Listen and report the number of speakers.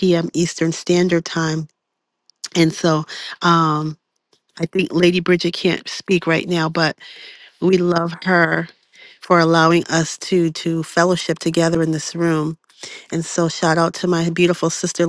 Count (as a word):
one